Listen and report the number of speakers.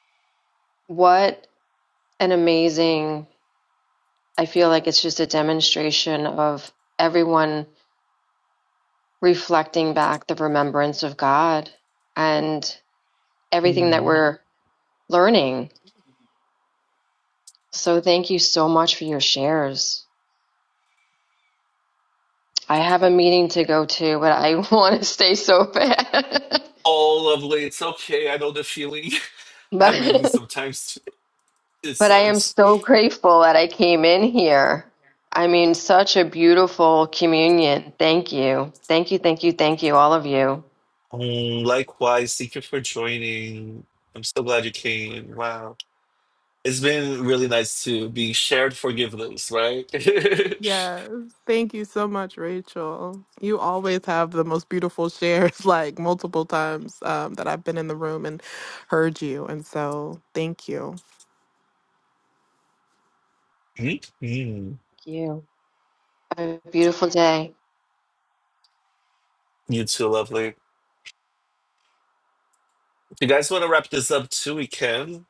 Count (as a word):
three